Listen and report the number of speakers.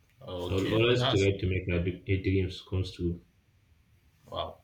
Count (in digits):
2